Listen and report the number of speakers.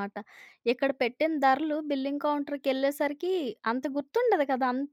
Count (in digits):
1